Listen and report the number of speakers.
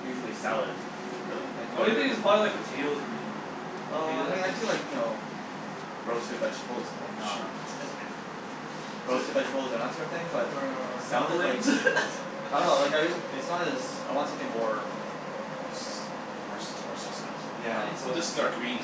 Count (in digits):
3